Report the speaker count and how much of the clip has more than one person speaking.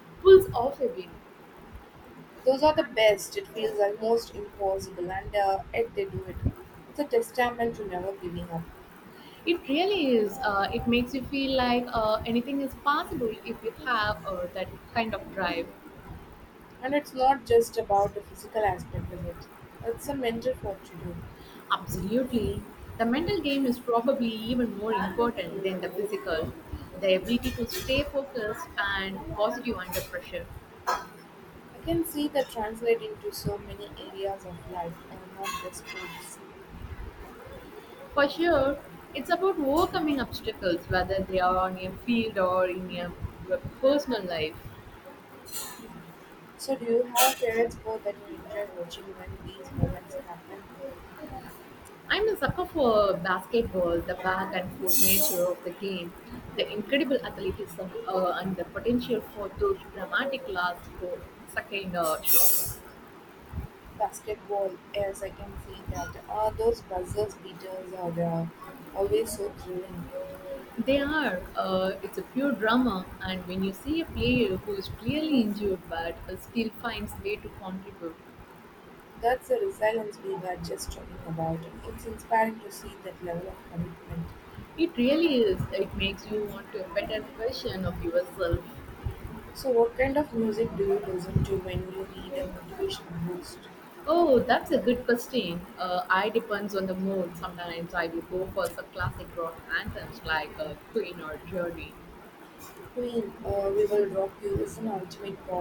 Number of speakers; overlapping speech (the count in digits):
2, no overlap